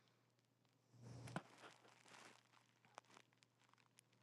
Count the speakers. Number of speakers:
0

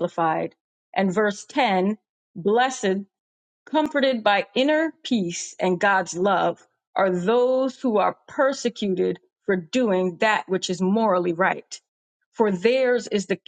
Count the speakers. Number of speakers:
1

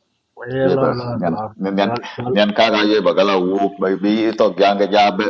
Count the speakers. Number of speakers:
2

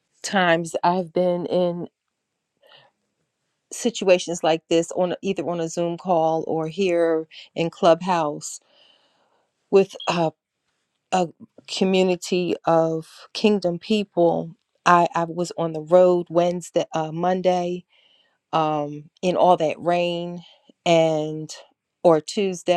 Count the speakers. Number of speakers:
1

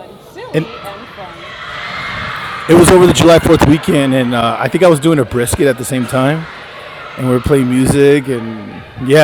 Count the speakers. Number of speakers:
2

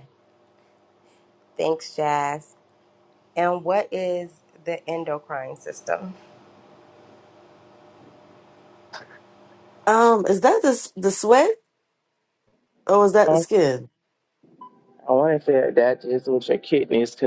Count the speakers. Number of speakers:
3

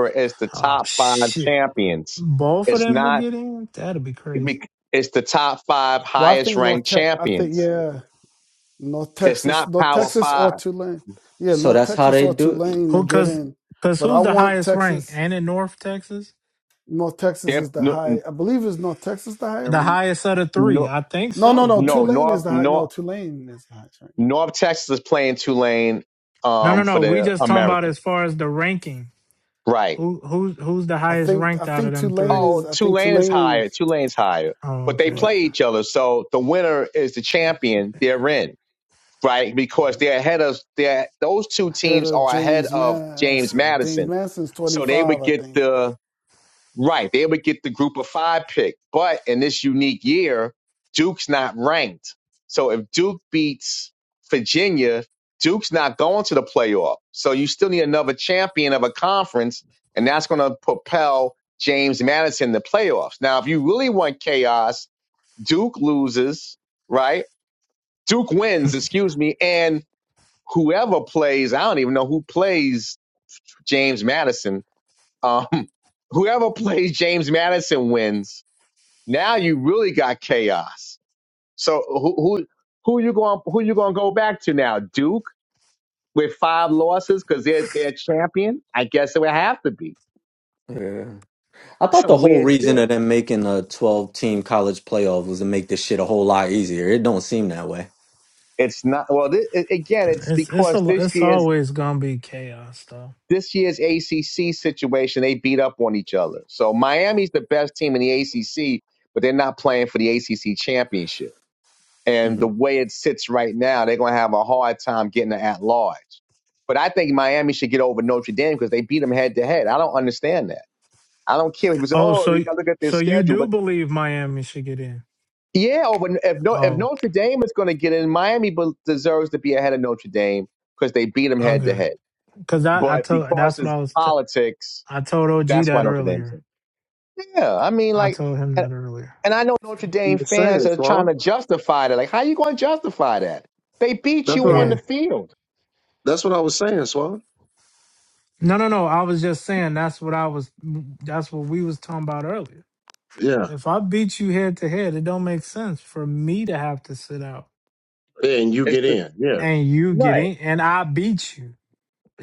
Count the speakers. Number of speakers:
5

